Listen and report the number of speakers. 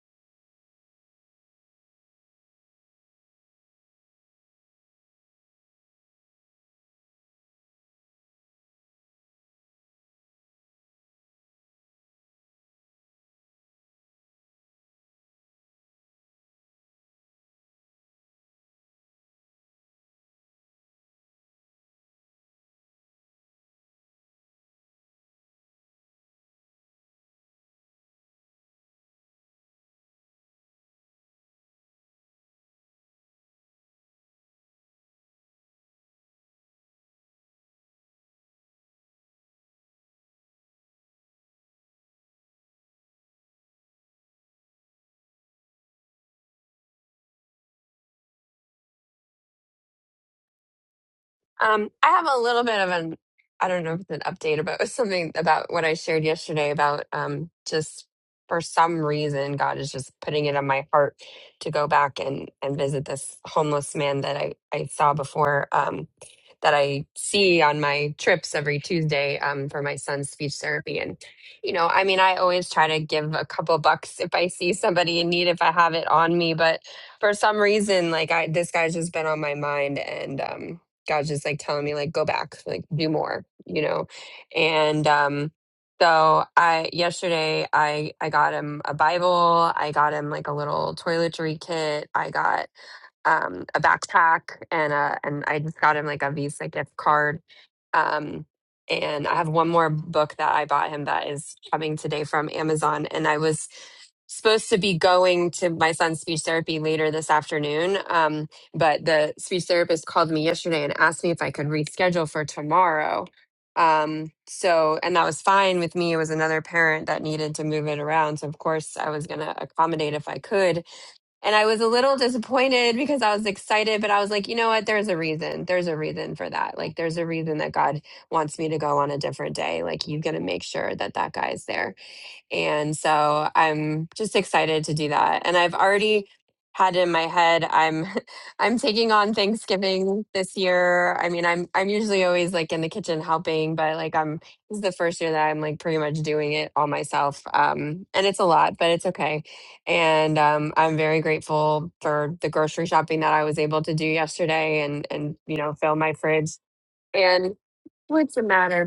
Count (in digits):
1